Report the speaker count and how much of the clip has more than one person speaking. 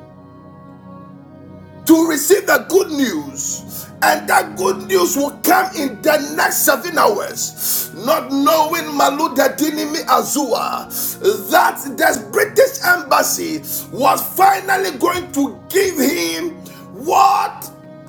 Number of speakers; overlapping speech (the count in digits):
1, no overlap